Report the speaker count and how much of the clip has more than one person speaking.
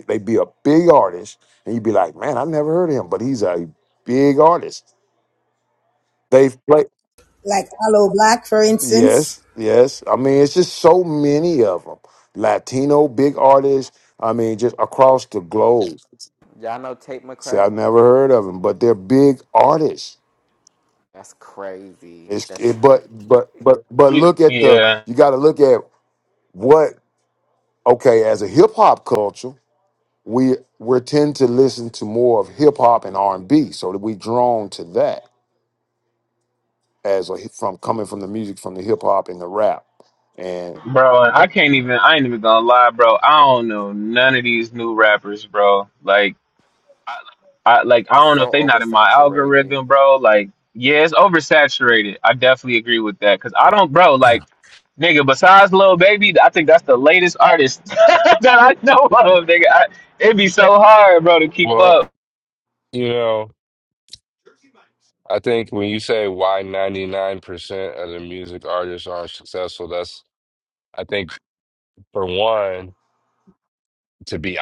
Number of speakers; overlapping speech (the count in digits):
5, about 5%